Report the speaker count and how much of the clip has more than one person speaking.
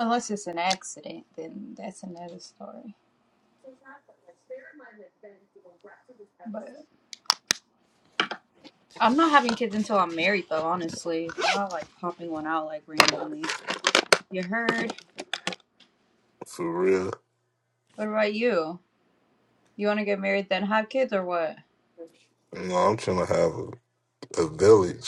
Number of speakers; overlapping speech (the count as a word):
two, no overlap